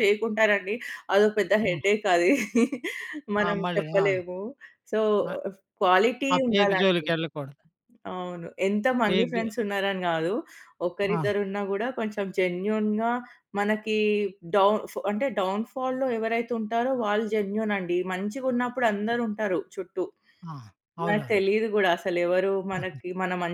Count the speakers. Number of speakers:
two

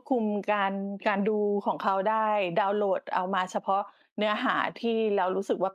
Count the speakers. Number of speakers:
one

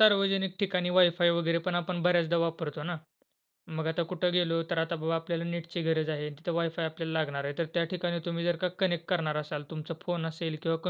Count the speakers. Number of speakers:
one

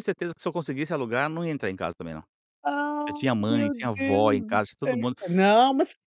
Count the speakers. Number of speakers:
two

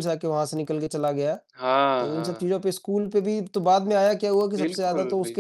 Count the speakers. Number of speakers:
two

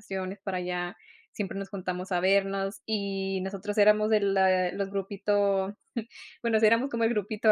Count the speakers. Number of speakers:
one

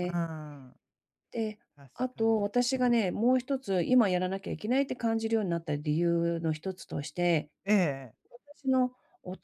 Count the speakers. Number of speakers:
two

